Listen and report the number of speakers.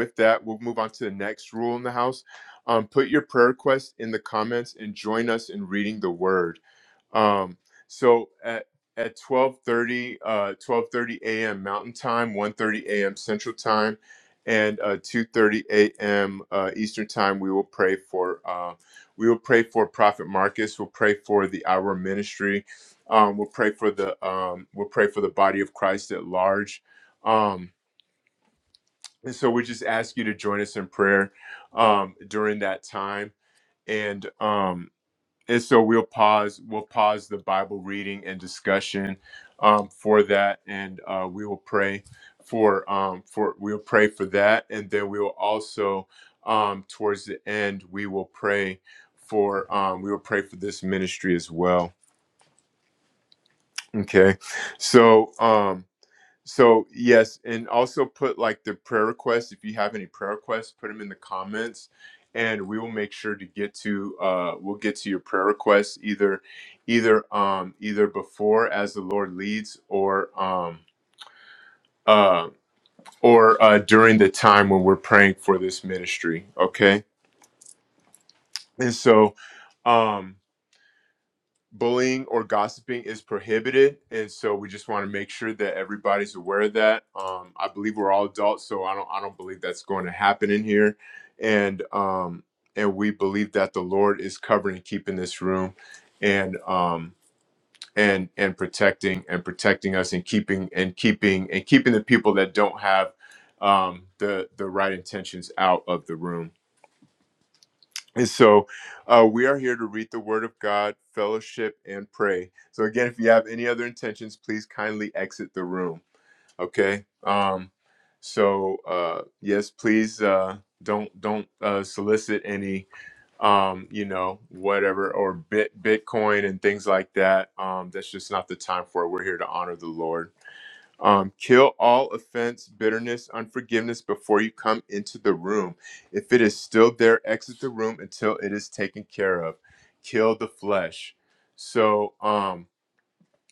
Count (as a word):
one